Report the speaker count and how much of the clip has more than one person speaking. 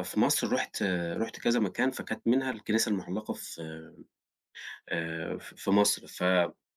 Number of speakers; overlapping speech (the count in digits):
1, no overlap